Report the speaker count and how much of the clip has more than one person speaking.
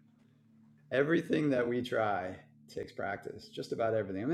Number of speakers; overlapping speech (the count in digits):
1, no overlap